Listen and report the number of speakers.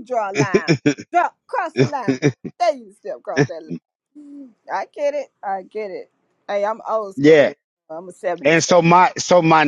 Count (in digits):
2